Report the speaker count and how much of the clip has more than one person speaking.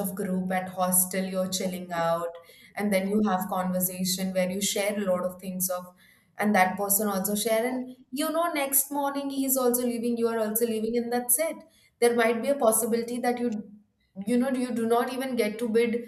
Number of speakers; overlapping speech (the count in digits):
1, no overlap